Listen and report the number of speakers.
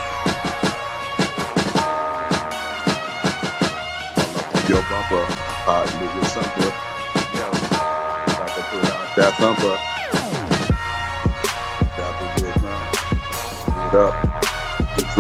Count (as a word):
one